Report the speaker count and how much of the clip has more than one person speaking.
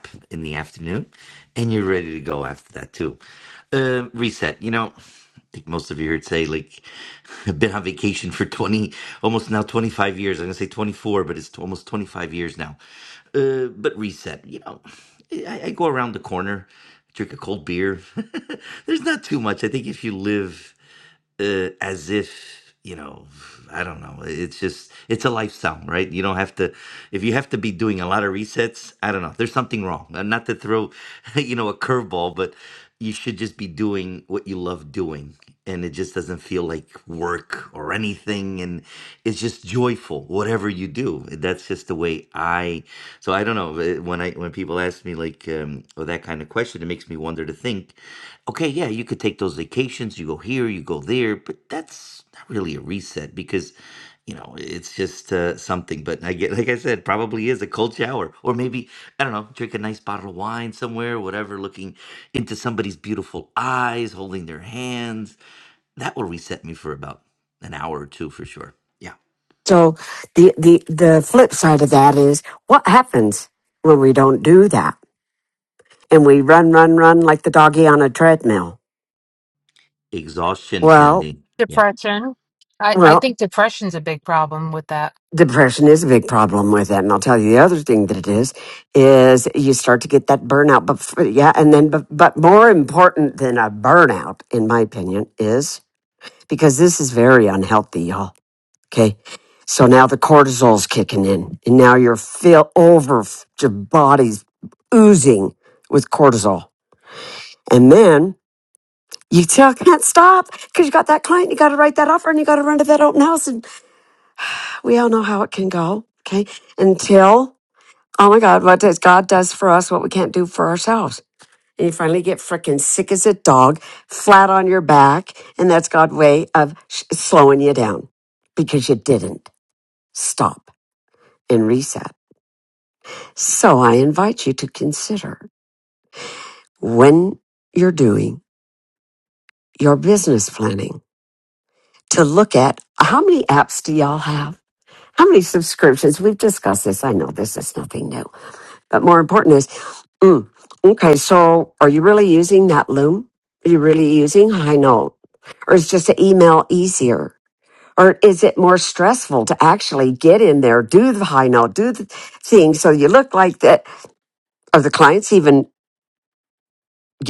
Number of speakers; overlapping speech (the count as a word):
three, about 1%